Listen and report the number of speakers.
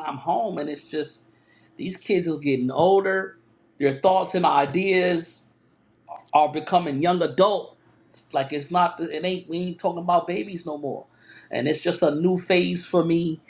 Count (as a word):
one